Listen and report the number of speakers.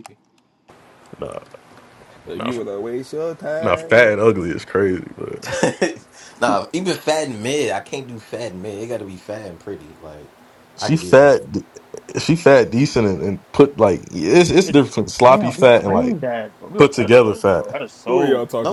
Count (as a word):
four